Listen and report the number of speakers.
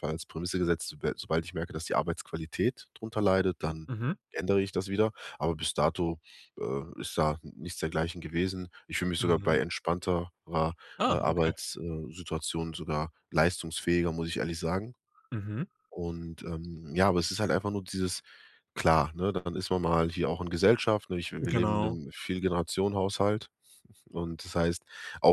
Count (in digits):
2